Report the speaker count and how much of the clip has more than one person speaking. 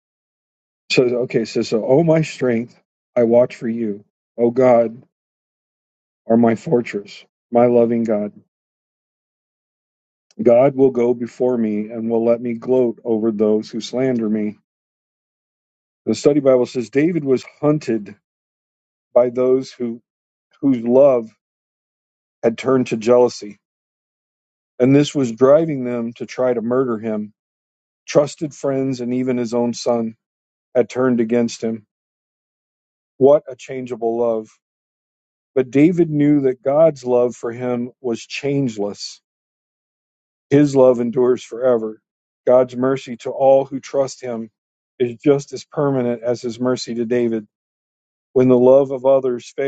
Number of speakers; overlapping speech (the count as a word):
one, no overlap